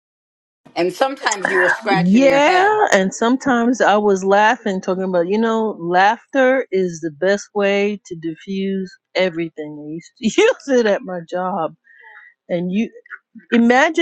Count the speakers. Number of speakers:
two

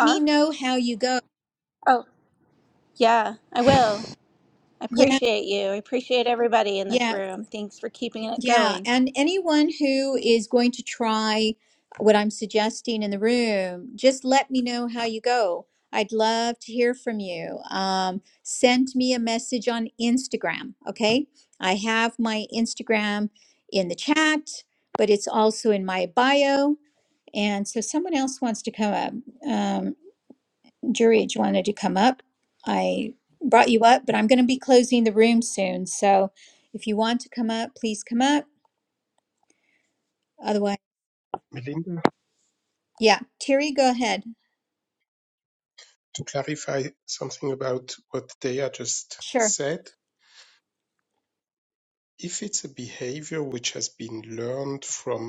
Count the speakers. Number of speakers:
three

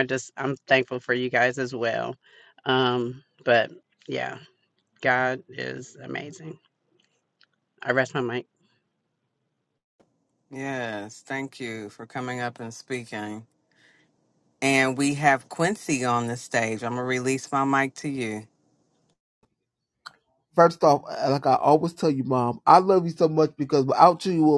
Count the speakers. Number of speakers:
three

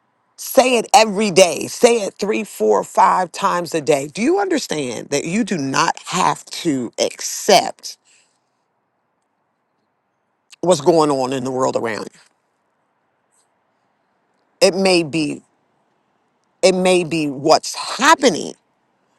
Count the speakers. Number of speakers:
one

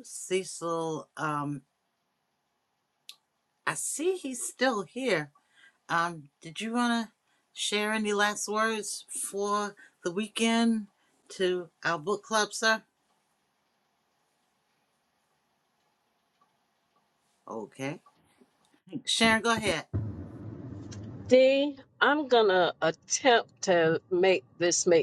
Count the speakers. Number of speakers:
two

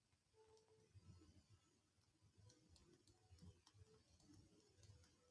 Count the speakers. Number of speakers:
zero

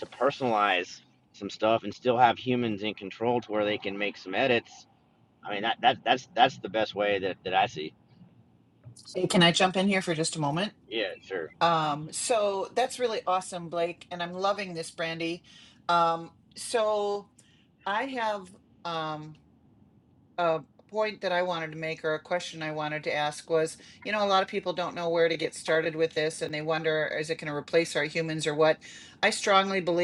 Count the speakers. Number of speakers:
two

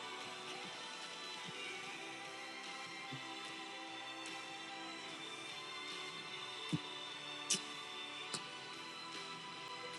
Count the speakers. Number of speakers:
zero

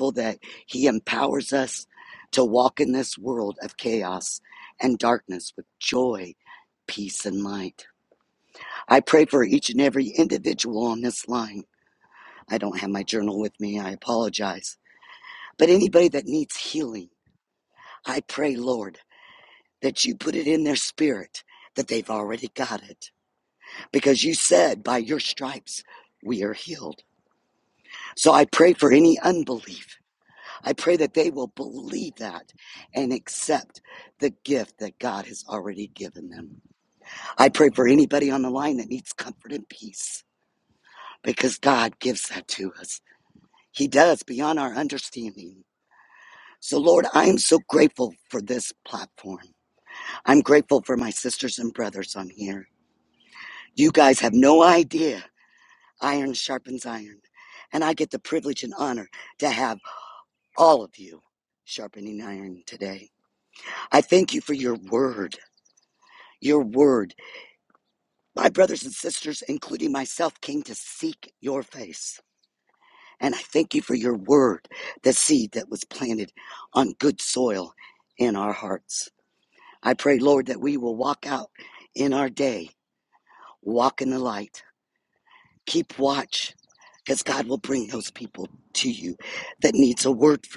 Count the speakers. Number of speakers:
one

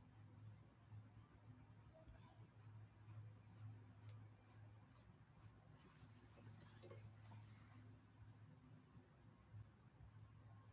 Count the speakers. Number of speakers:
zero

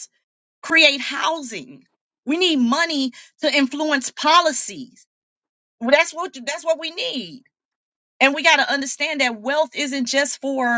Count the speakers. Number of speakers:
one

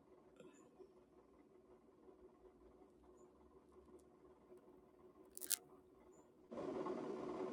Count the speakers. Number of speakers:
zero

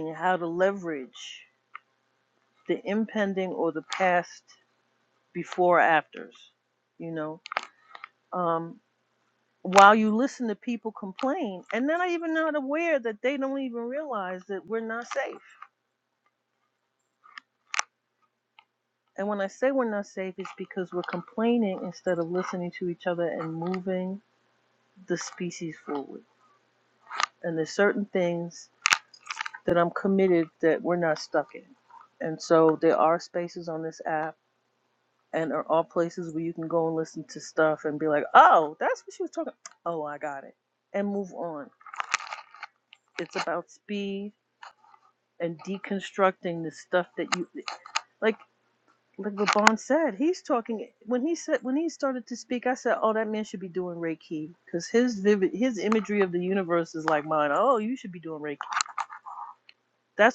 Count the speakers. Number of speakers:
one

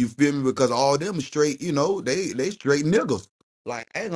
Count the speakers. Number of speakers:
one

